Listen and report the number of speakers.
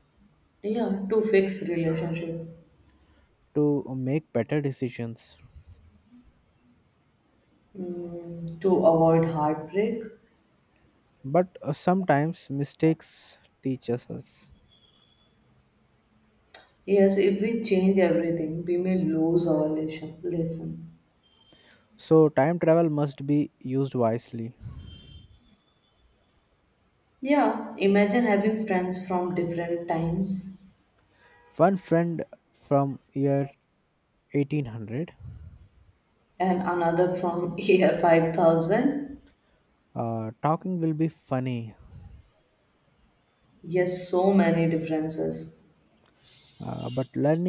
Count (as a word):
two